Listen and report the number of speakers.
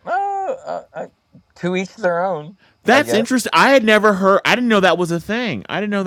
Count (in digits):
2